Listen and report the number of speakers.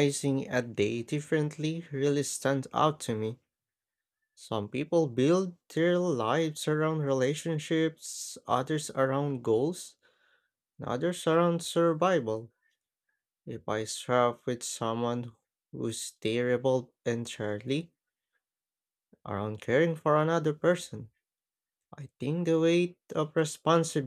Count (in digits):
1